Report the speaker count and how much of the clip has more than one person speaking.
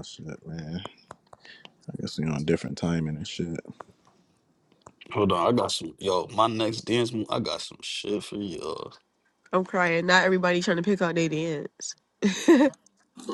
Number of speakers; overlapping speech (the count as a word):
three, no overlap